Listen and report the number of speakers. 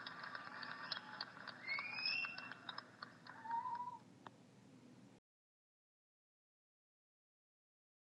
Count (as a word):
zero